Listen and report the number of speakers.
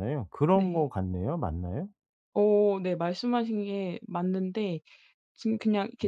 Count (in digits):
2